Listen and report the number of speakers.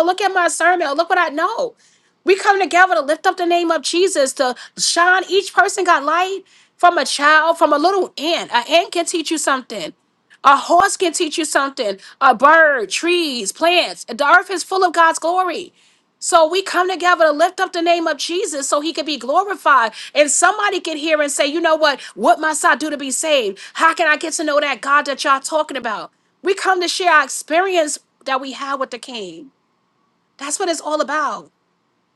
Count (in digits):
1